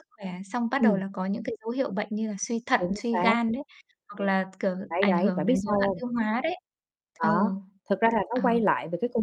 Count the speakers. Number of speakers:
2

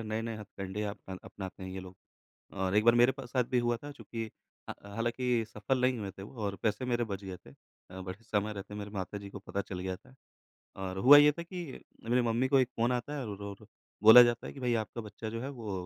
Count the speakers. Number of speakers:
1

